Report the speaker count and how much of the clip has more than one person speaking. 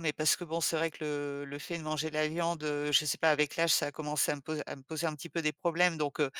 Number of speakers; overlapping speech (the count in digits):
1, no overlap